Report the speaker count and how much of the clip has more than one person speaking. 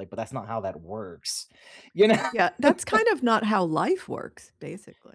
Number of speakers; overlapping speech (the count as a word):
two, under 1%